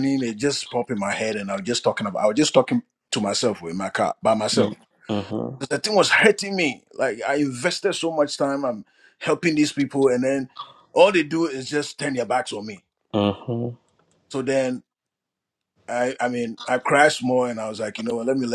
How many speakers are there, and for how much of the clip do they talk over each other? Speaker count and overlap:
2, no overlap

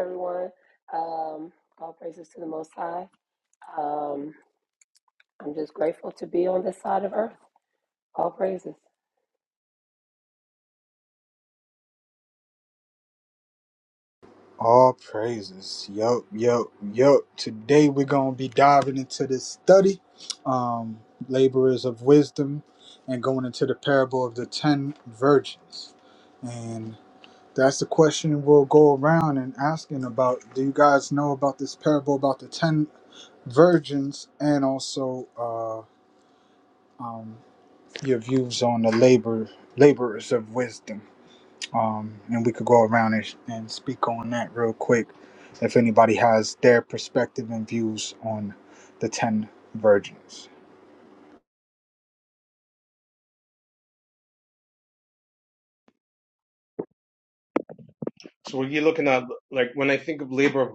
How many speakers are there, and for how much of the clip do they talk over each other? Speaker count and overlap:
3, no overlap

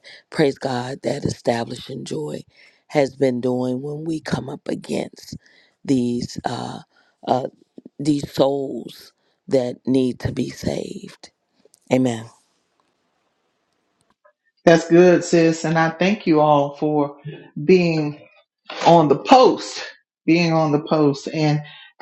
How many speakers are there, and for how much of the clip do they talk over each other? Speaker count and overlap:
2, no overlap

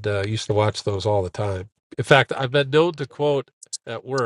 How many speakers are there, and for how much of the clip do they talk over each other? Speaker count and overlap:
1, no overlap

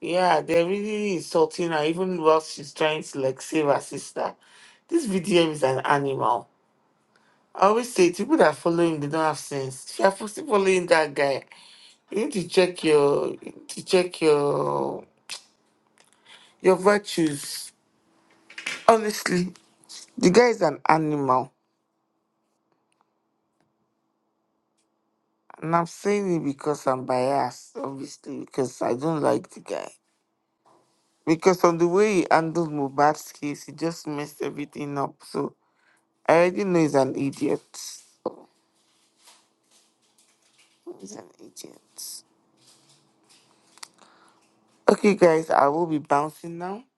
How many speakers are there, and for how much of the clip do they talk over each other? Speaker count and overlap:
1, no overlap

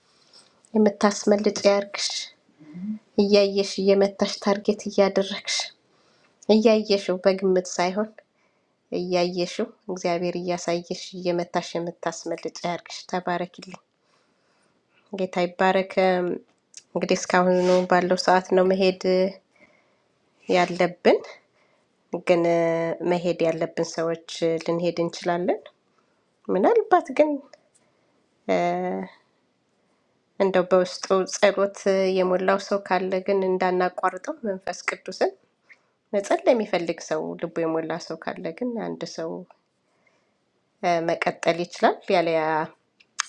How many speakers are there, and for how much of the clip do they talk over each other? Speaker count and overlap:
1, no overlap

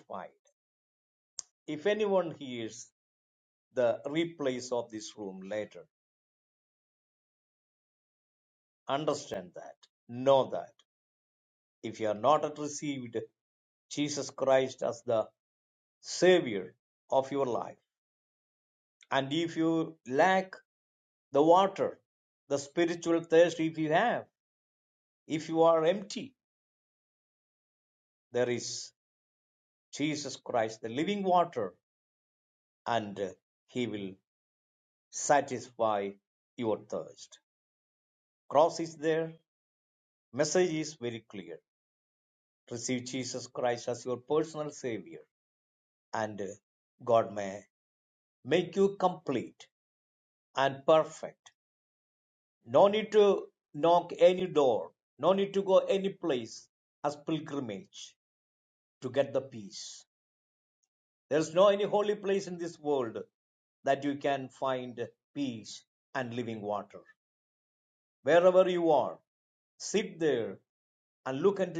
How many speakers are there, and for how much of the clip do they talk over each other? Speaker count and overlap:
1, no overlap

